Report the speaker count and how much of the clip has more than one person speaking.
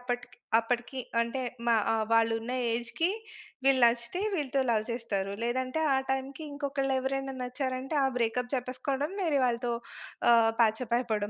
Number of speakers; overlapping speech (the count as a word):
one, no overlap